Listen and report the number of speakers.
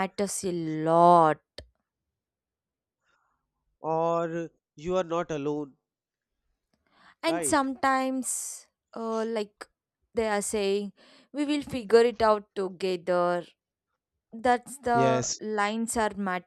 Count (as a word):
two